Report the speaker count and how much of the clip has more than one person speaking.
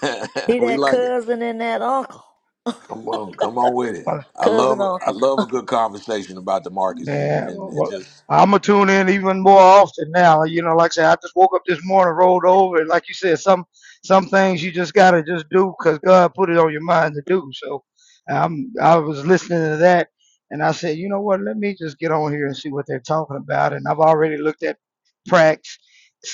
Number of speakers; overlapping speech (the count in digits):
3, about 9%